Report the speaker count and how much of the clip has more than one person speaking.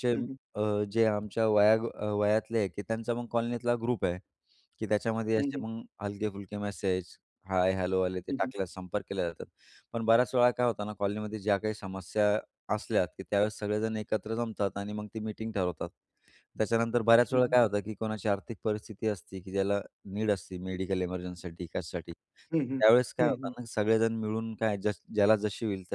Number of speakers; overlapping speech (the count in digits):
2, about 4%